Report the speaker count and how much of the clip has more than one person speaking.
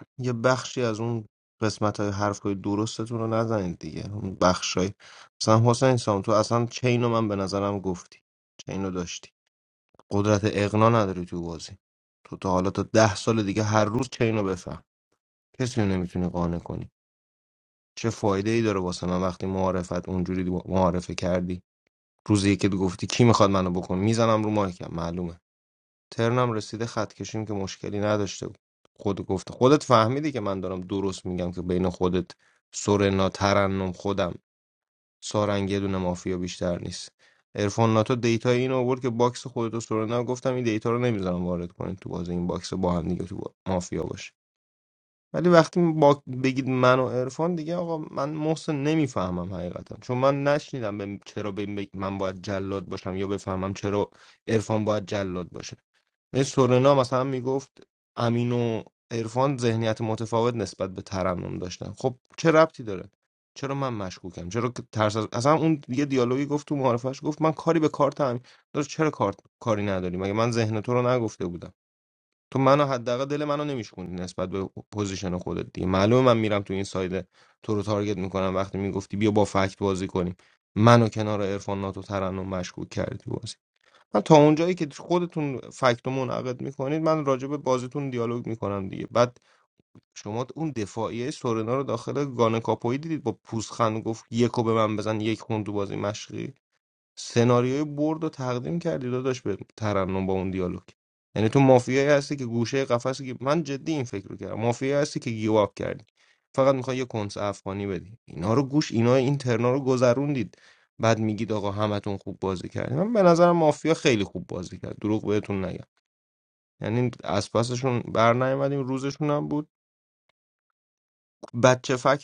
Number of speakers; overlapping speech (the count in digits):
1, no overlap